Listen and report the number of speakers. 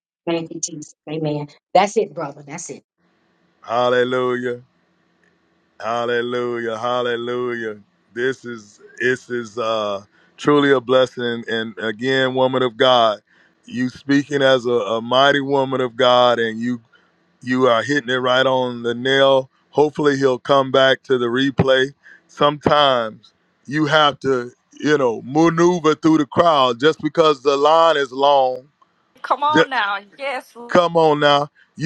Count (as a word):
three